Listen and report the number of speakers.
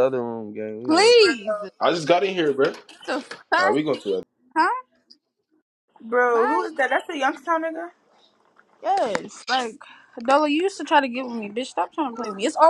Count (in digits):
4